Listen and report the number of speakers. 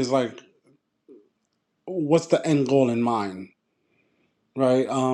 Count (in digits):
1